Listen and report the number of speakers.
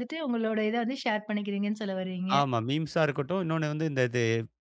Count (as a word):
two